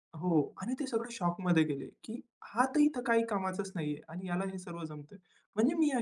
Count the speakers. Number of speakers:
one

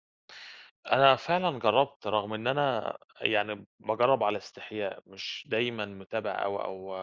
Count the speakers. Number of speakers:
one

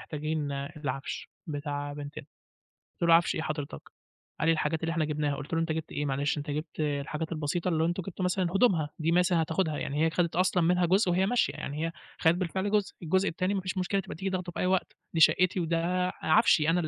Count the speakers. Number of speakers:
one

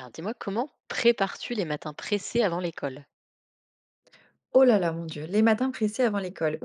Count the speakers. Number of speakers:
two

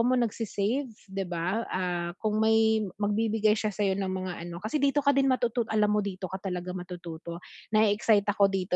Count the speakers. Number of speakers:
one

